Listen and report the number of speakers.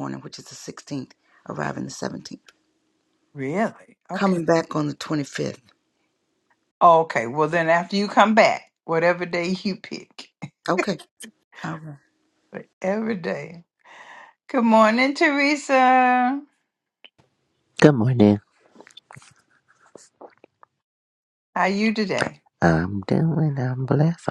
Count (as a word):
three